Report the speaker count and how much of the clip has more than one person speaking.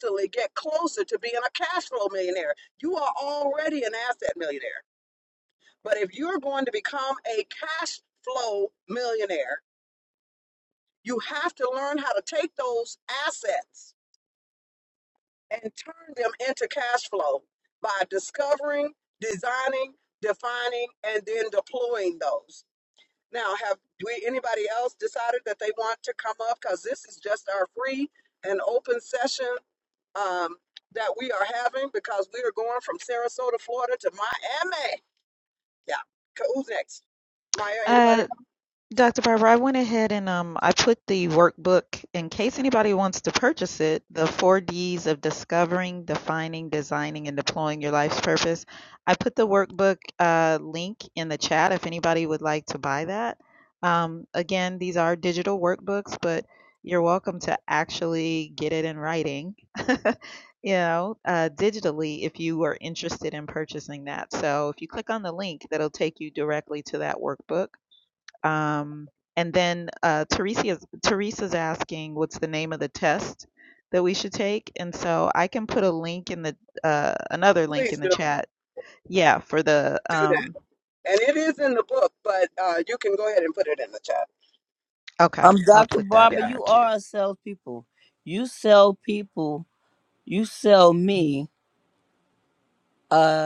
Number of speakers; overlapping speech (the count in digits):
3, about 3%